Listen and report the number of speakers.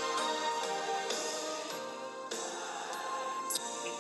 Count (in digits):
0